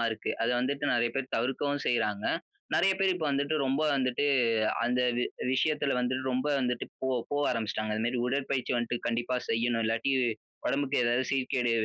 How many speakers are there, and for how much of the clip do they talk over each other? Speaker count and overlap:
one, no overlap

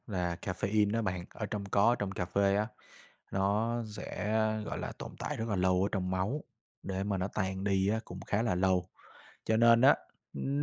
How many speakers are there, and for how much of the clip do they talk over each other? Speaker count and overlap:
one, no overlap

